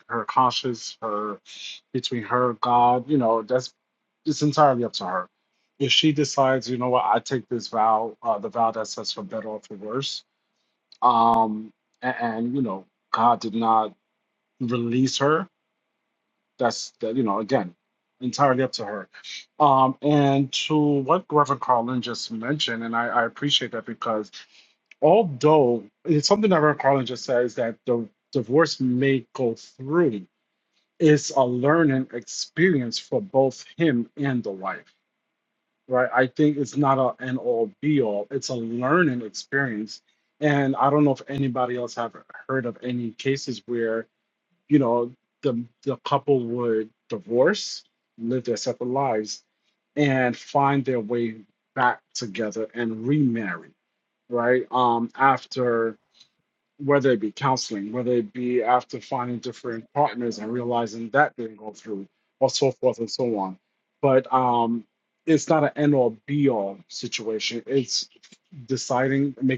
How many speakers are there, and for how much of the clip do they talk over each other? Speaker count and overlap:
1, no overlap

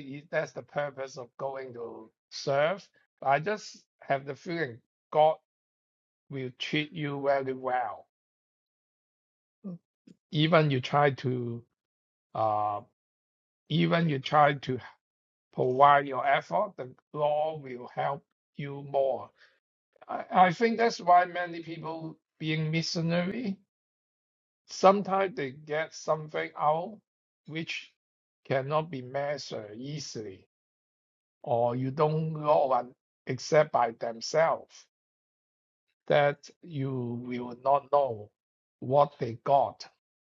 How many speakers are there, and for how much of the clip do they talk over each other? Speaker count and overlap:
1, no overlap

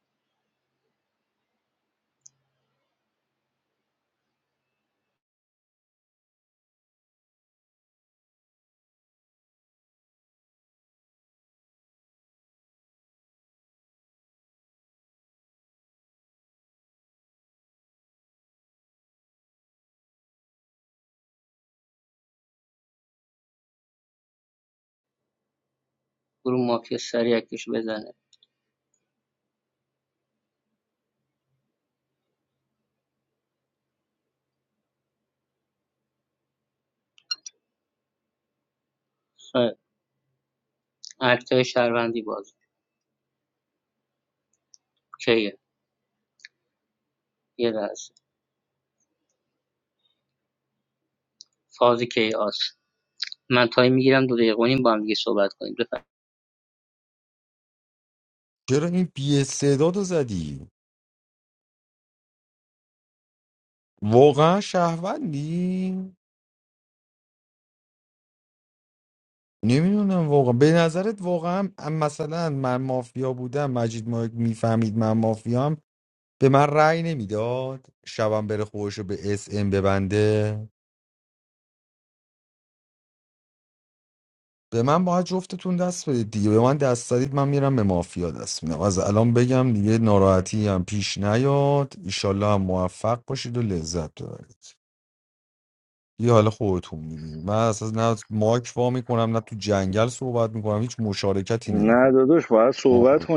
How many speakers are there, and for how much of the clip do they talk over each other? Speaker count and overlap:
3, under 1%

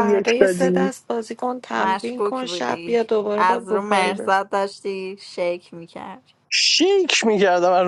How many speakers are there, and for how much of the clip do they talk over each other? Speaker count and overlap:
3, about 40%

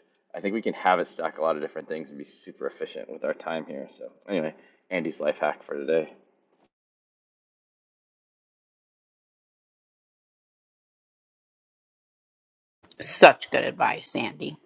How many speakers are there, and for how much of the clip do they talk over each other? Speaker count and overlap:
2, no overlap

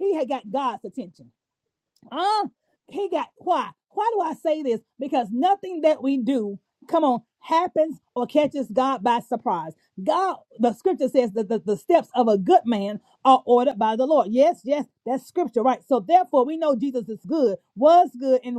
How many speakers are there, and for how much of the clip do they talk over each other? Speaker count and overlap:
1, no overlap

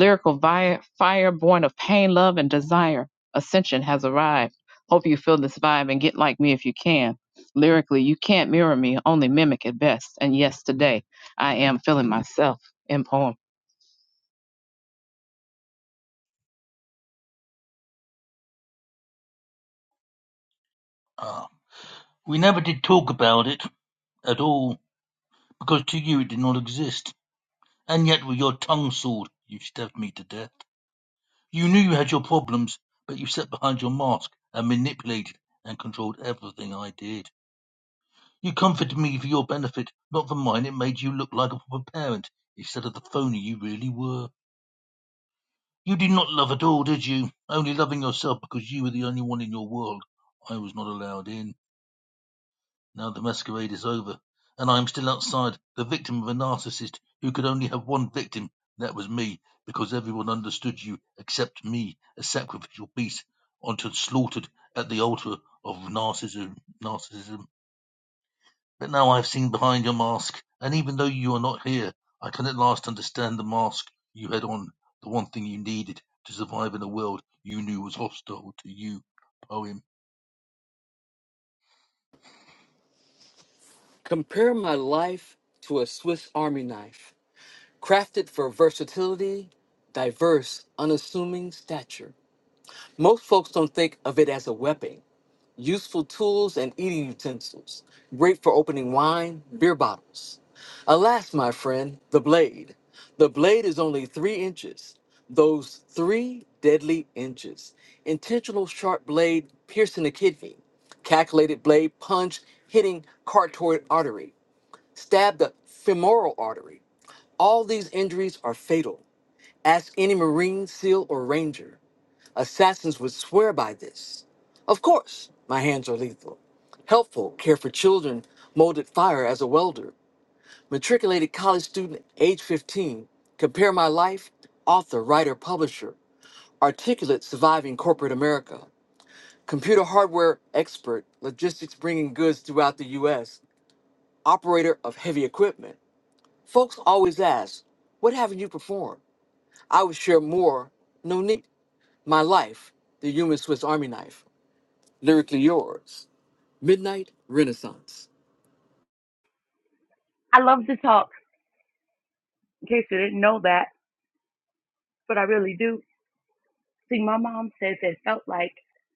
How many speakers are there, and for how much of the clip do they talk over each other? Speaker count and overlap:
4, no overlap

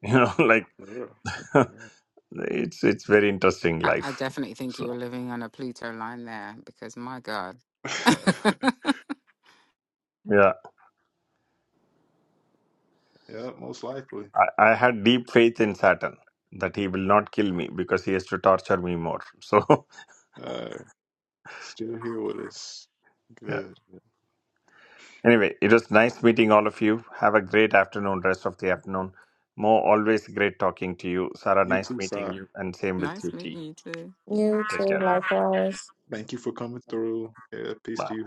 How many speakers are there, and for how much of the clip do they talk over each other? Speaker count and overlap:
4, about 7%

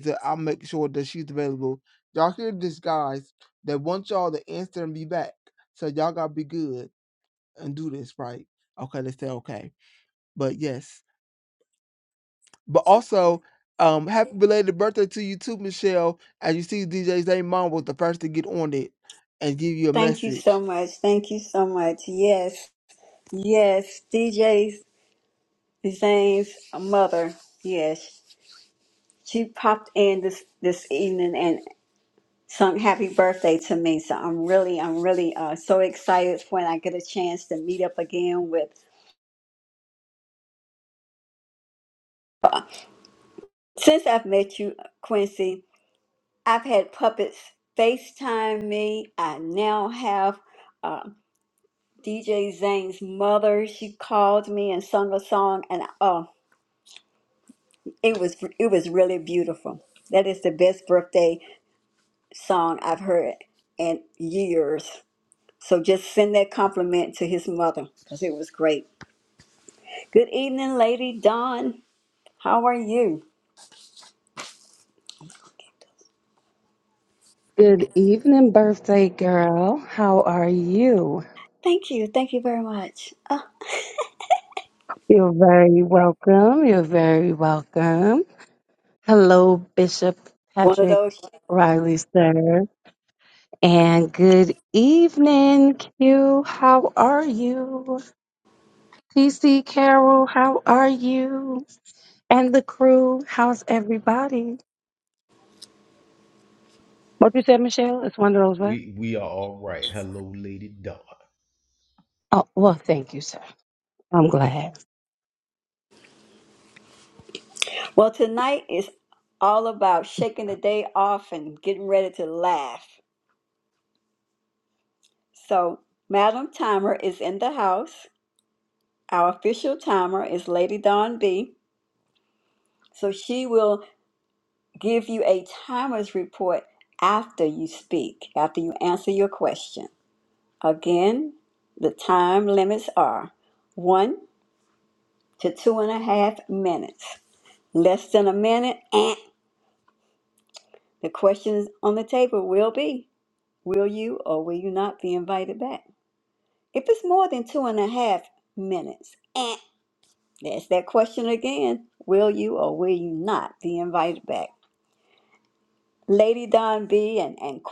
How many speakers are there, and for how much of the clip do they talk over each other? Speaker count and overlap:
4, about 1%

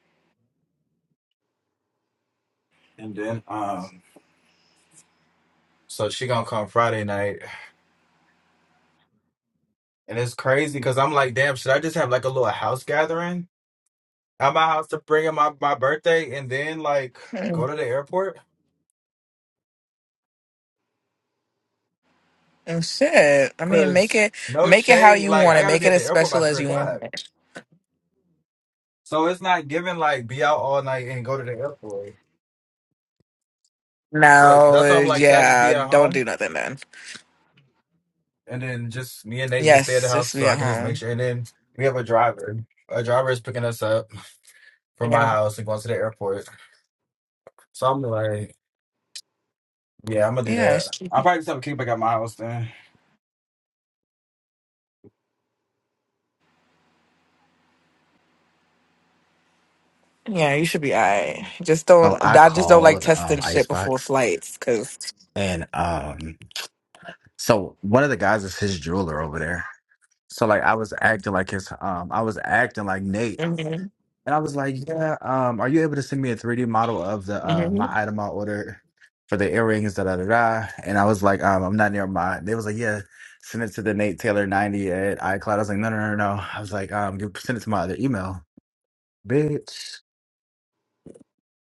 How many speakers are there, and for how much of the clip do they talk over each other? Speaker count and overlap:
2, about 11%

